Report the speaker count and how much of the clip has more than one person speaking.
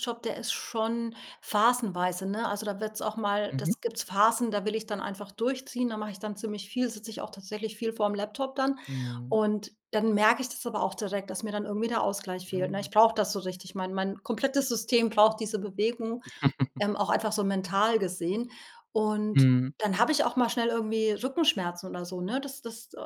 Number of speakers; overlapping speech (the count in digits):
2, about 2%